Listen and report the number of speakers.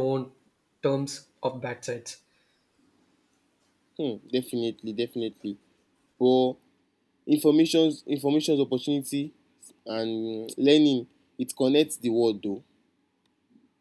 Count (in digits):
2